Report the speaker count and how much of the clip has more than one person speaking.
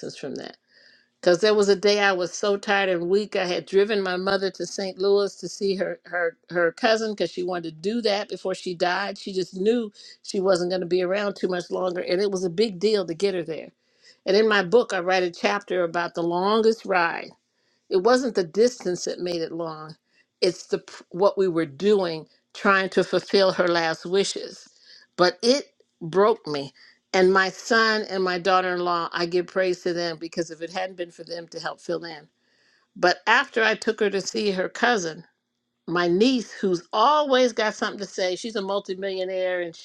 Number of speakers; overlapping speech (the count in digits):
1, no overlap